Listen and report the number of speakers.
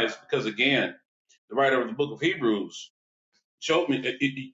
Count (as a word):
one